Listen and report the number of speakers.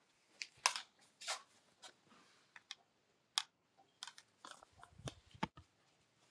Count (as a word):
zero